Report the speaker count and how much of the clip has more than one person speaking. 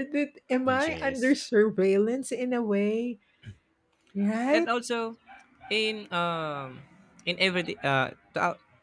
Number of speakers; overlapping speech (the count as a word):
two, about 6%